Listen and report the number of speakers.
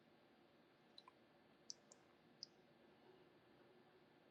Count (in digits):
0